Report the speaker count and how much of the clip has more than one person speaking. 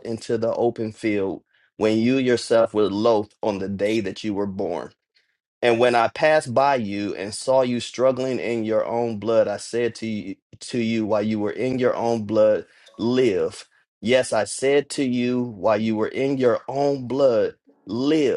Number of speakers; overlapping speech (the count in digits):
1, no overlap